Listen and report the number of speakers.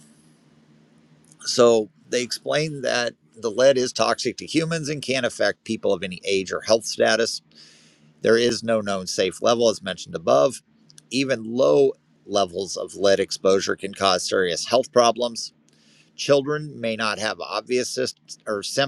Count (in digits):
1